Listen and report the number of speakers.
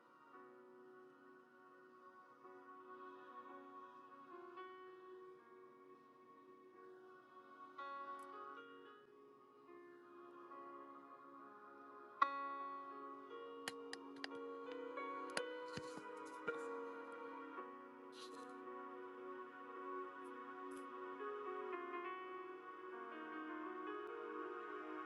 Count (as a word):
zero